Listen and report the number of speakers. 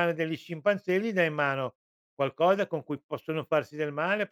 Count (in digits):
1